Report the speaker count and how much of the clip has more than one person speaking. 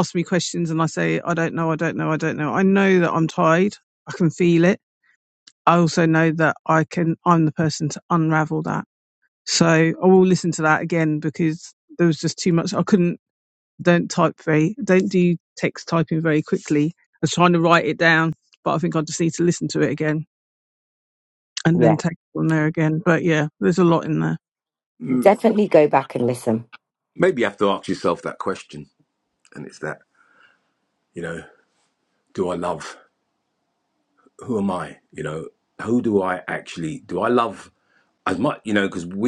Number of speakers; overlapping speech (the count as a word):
three, about 1%